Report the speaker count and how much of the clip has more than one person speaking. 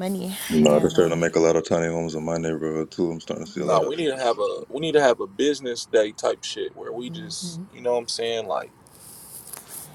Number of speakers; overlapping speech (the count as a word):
three, about 17%